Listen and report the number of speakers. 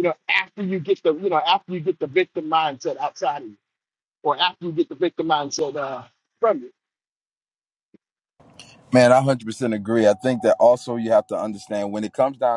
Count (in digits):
2